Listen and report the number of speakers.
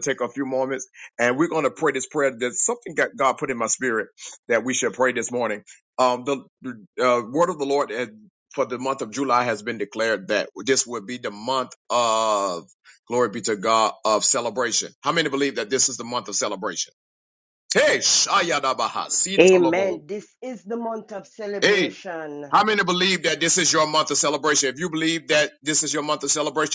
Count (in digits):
2